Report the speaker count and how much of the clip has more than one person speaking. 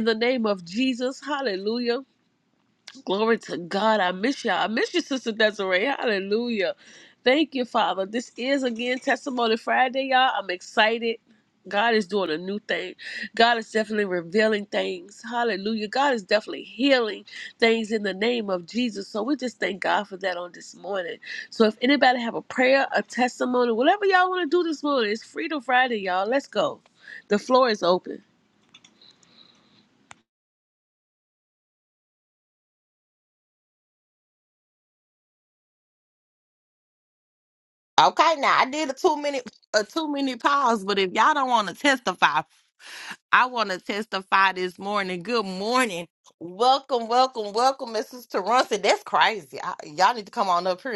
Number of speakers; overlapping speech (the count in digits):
2, no overlap